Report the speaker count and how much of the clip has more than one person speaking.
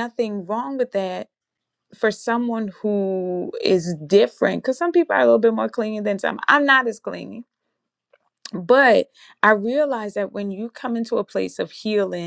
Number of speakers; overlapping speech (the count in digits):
1, no overlap